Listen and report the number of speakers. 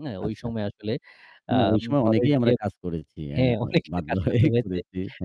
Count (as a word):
two